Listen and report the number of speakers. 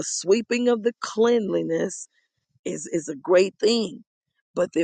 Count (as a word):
one